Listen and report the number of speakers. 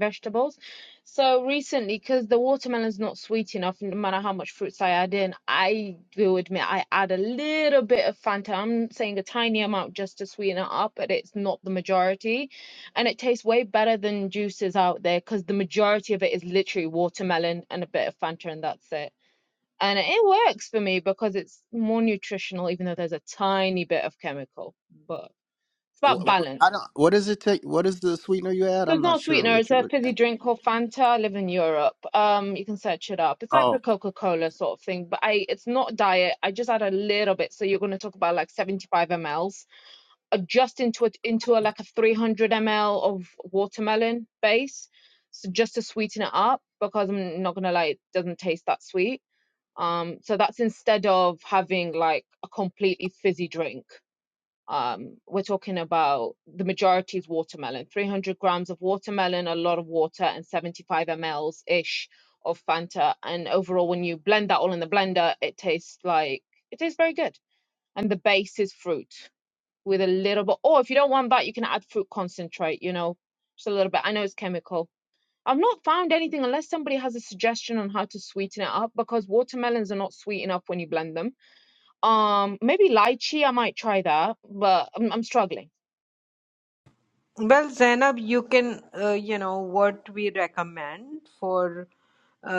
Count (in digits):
3